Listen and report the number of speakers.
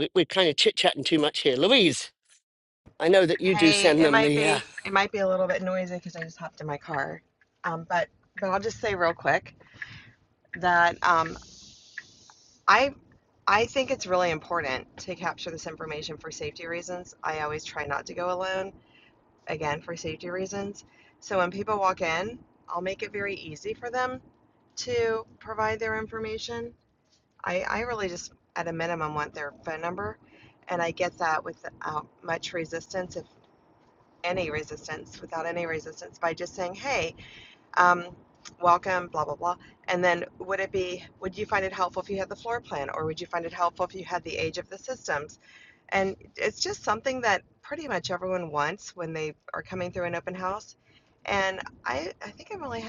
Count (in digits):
2